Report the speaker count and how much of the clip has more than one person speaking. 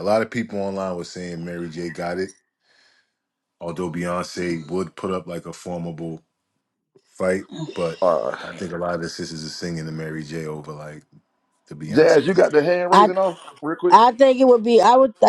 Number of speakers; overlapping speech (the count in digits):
3, about 4%